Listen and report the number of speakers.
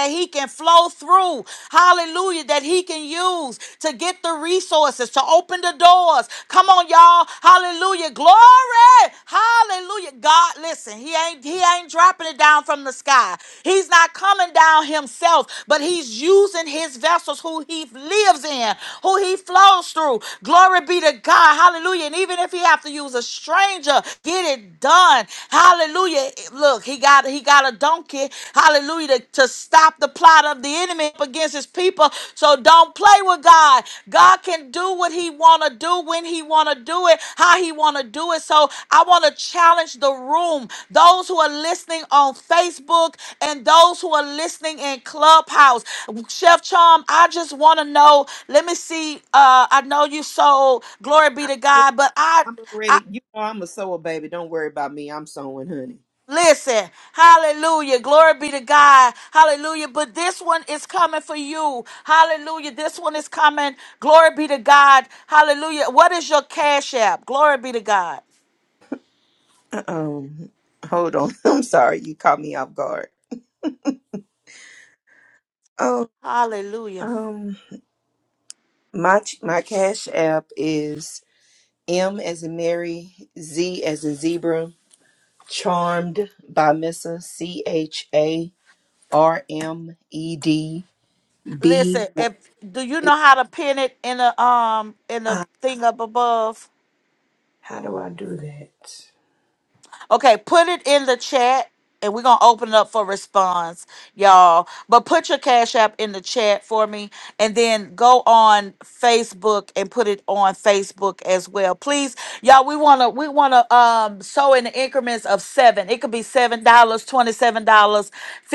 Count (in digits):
2